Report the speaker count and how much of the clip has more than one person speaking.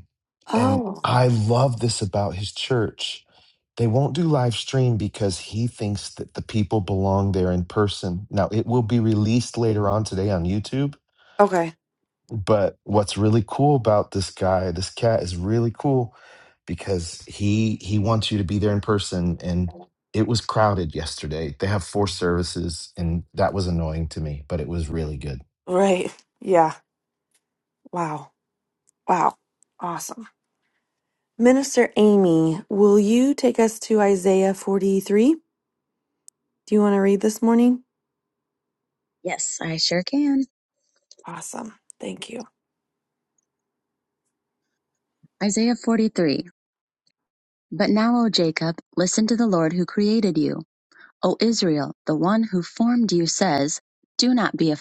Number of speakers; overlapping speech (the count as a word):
three, about 1%